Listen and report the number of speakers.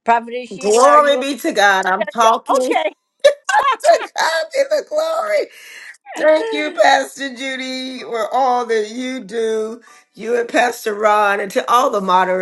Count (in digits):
2